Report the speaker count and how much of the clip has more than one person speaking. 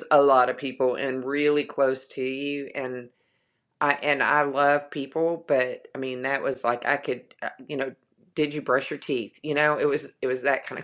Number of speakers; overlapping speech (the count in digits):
1, no overlap